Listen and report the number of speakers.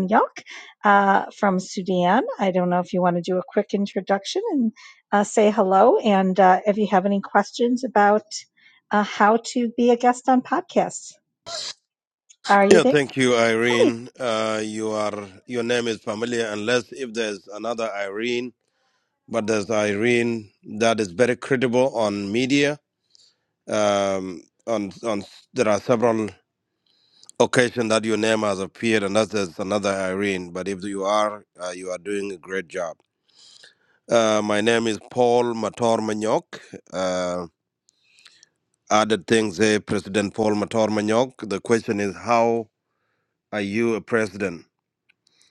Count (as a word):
two